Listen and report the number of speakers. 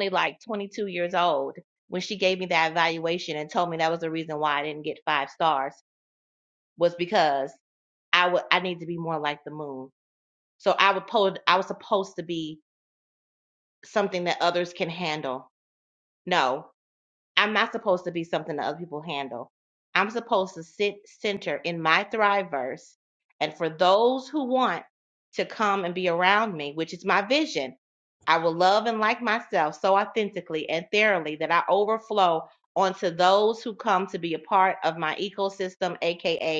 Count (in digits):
1